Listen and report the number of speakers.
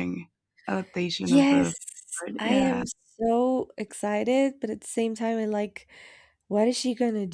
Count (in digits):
2